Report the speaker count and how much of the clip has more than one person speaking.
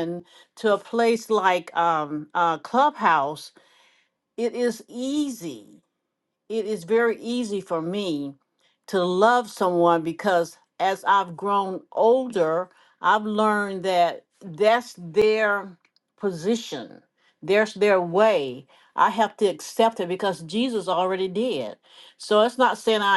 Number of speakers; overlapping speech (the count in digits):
1, no overlap